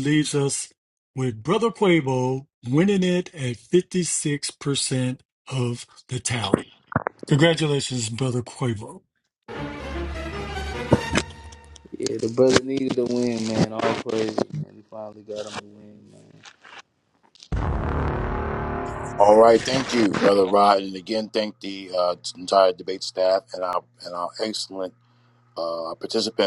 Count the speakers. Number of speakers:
3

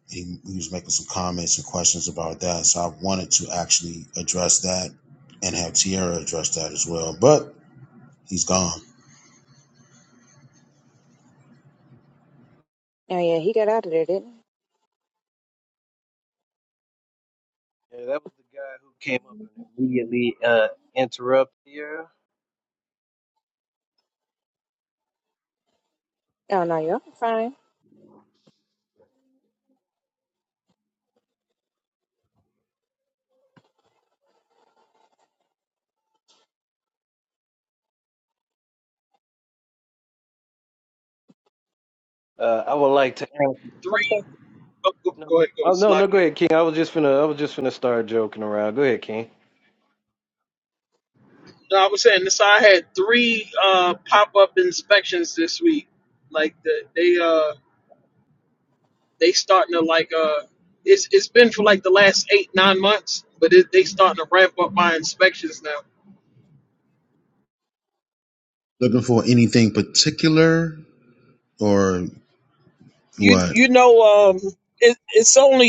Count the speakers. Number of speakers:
4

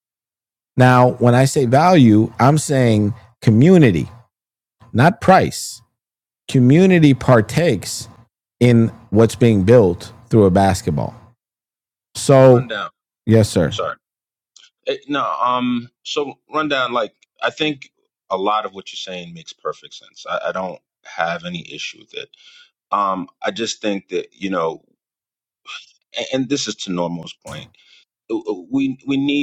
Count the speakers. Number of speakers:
2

